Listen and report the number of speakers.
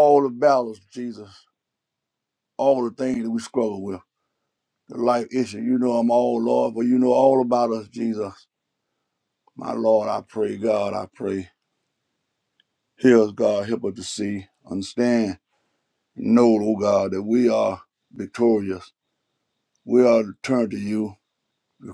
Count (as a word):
one